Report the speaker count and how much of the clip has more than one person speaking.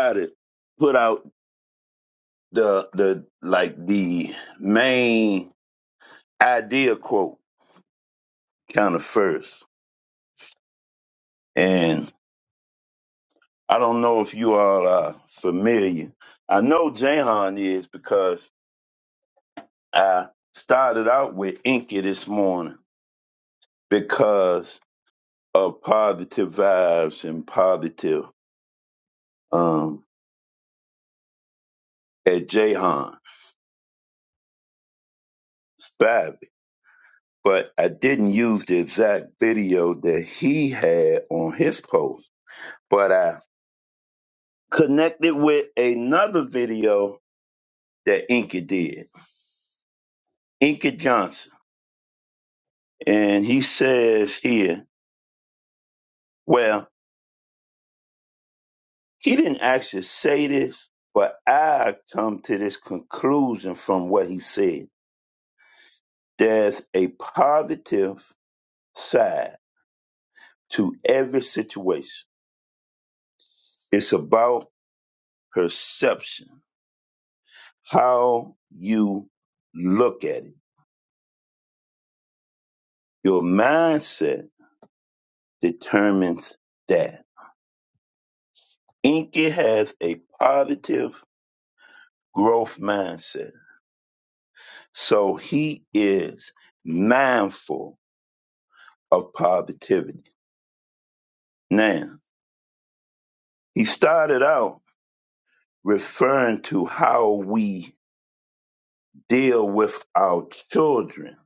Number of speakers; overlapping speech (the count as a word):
one, no overlap